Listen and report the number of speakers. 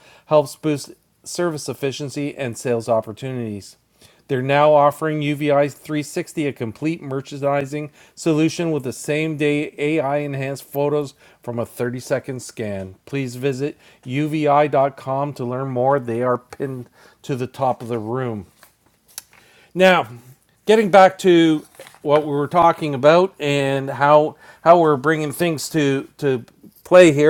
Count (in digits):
1